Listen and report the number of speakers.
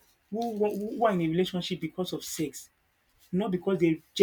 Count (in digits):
1